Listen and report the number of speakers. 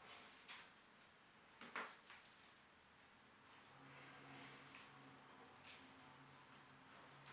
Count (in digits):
0